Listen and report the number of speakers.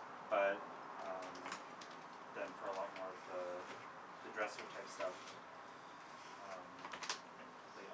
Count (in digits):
1